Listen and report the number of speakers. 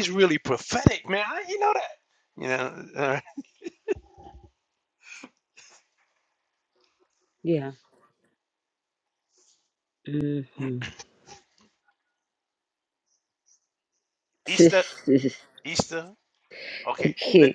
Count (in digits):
2